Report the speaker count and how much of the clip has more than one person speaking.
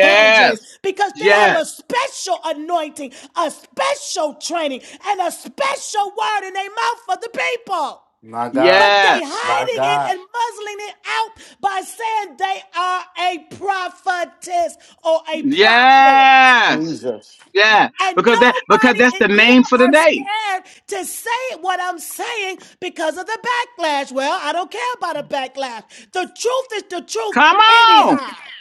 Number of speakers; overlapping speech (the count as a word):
three, about 21%